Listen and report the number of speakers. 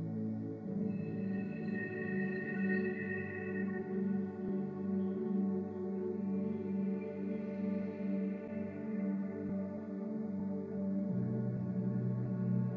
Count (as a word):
zero